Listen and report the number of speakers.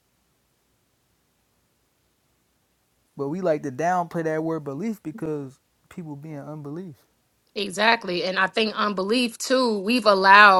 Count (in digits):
2